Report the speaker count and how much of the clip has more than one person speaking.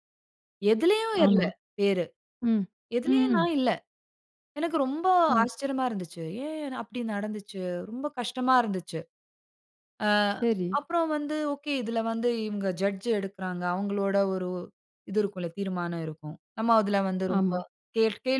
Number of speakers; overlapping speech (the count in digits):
2, about 6%